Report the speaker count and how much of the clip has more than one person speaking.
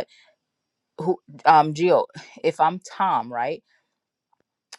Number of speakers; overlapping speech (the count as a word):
one, no overlap